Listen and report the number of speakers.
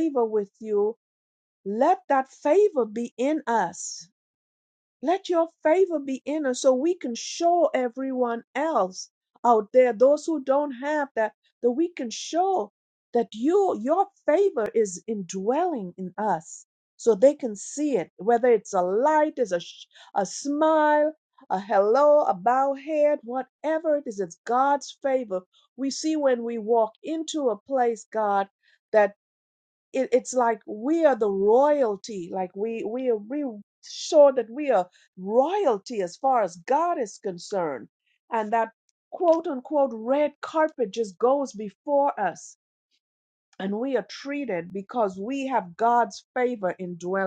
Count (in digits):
1